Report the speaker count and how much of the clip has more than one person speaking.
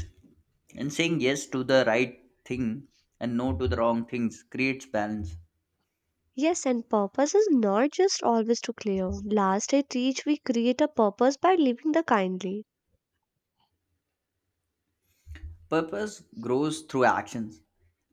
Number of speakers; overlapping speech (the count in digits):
2, no overlap